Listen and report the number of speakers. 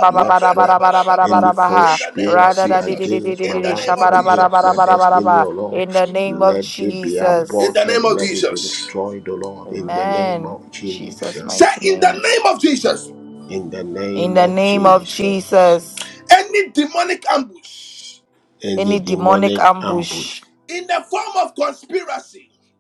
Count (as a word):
three